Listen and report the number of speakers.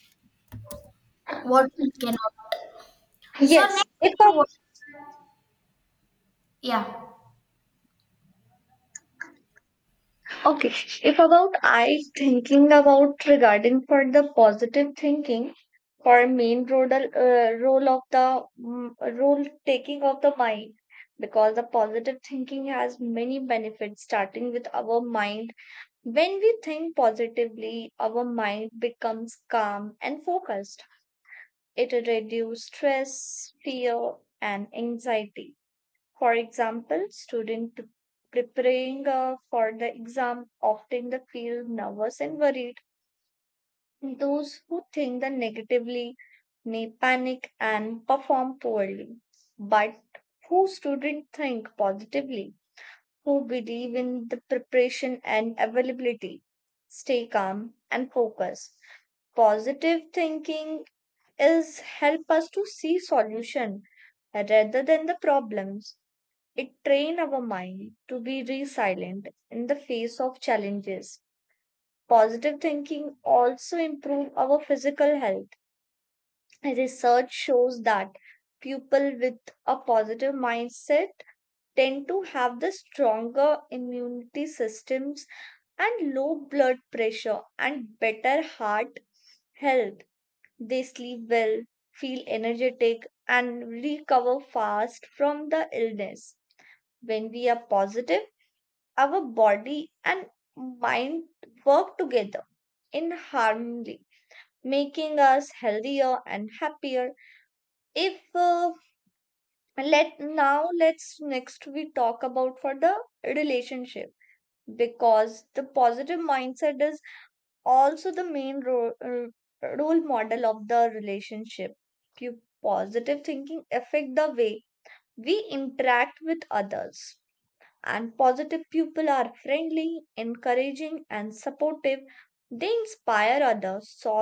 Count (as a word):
two